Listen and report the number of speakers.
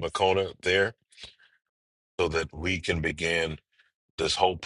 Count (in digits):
1